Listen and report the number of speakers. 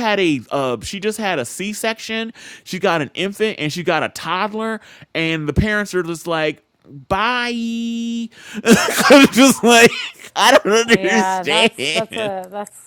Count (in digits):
2